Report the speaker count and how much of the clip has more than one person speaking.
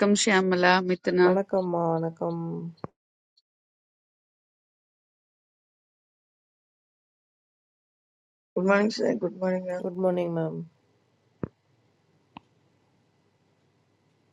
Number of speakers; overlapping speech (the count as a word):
three, about 1%